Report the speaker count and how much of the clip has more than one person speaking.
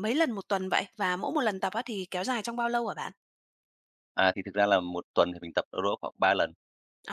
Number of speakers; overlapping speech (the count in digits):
2, no overlap